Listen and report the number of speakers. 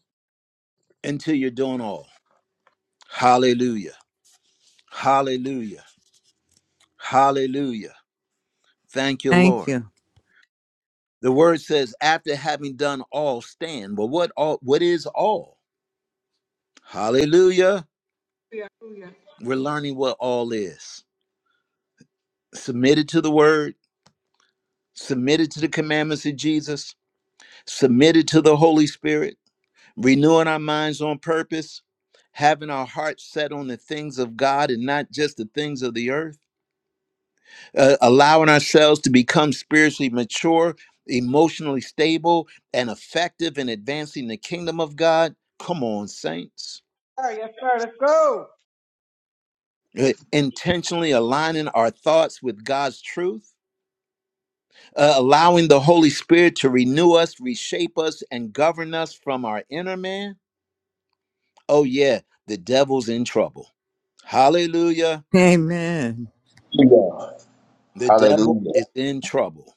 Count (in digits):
4